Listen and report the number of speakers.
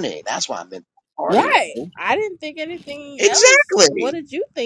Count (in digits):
2